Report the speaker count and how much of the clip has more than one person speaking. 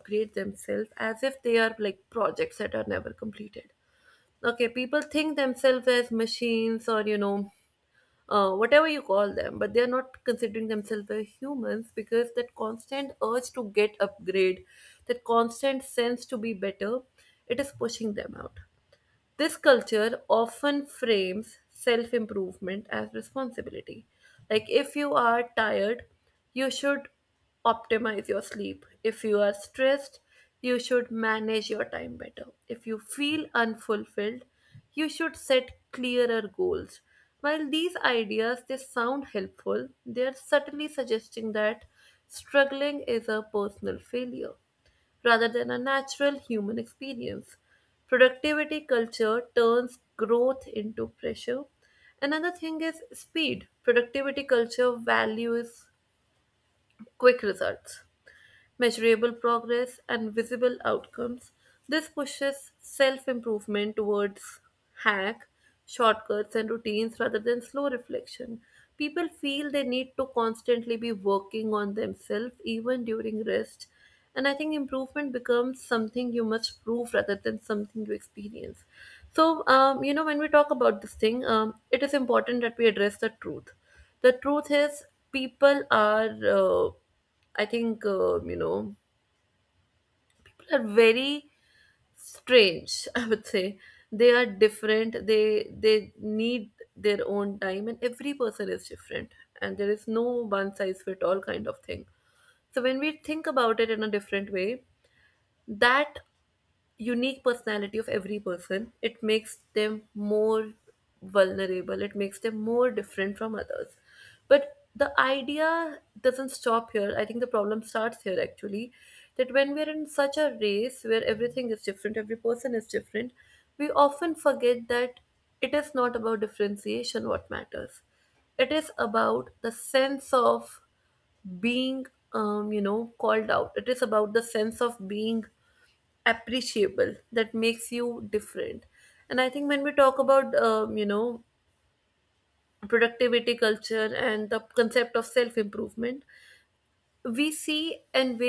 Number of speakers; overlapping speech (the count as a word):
one, no overlap